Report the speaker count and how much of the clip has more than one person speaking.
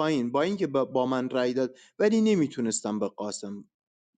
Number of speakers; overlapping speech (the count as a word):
one, no overlap